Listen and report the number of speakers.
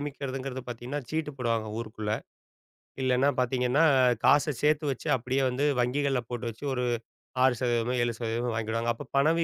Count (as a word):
one